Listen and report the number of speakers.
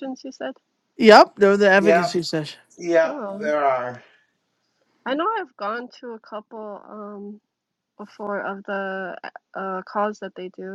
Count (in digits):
3